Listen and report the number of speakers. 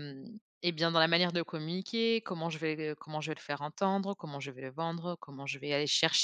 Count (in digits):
1